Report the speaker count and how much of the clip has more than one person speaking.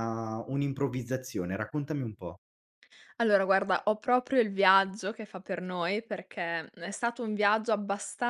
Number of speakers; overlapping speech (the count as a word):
two, no overlap